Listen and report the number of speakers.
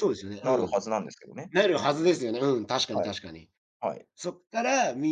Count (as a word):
two